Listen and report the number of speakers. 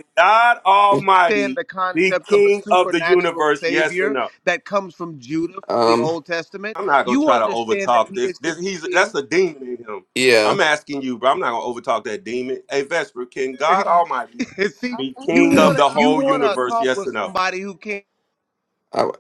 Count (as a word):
three